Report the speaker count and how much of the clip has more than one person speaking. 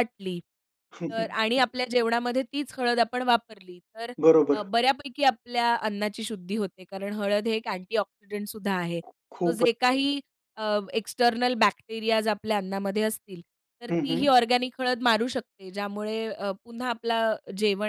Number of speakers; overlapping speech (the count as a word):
two, about 4%